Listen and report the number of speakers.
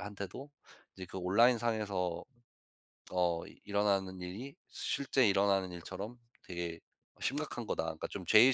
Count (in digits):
1